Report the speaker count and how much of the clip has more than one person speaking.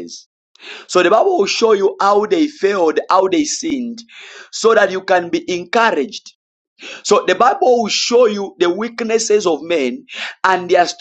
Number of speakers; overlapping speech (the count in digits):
1, no overlap